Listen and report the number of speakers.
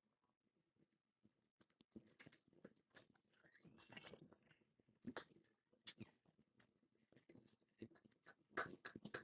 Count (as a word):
zero